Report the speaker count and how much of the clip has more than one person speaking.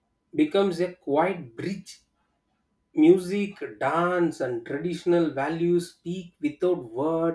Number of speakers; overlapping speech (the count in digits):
1, no overlap